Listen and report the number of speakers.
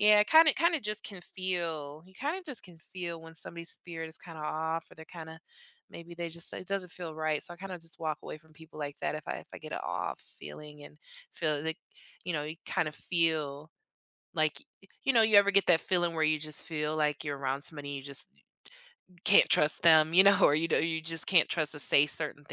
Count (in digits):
1